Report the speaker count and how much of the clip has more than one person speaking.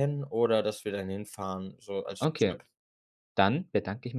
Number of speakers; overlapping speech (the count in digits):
2, about 9%